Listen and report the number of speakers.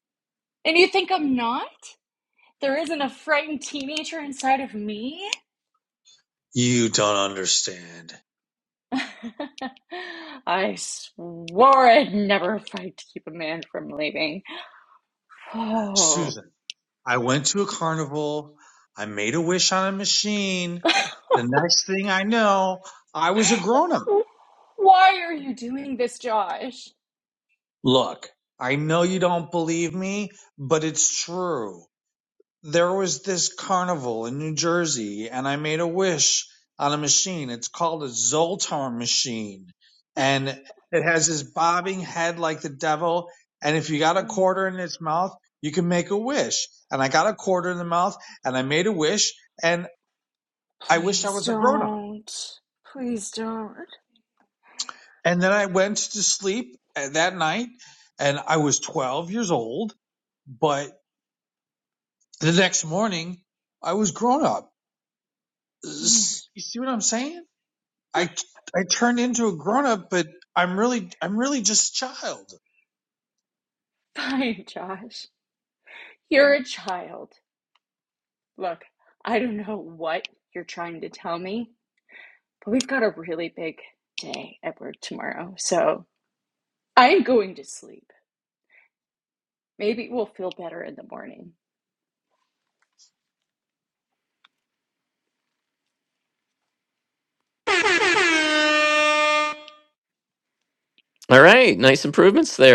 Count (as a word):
three